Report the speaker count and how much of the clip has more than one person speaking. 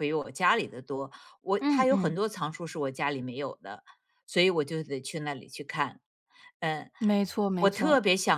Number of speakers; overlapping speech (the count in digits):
2, about 10%